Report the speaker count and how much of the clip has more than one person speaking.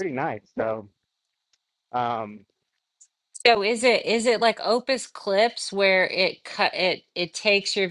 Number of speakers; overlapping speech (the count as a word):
two, no overlap